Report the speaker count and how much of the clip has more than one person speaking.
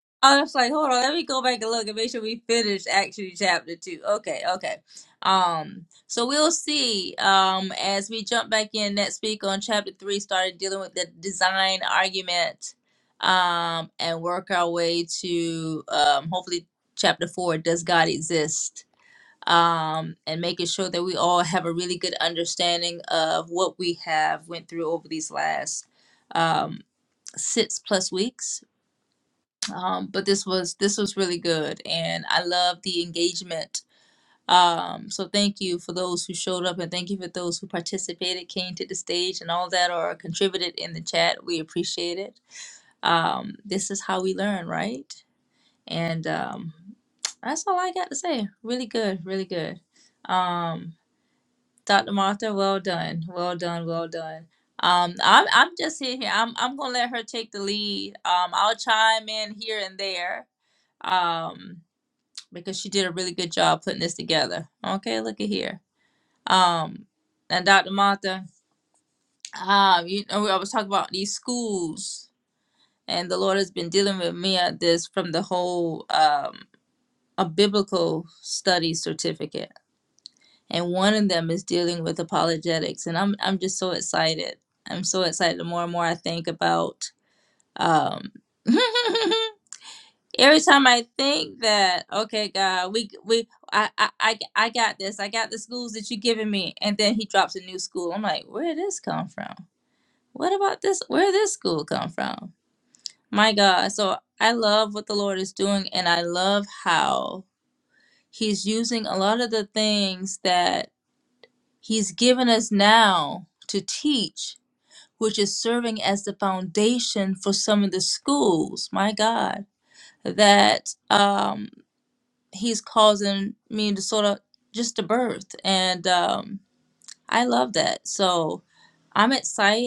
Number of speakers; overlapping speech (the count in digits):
1, no overlap